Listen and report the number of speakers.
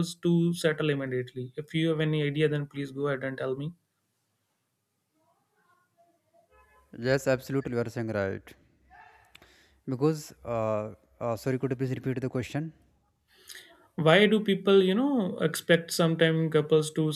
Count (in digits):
2